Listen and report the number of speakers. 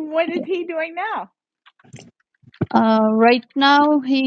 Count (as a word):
two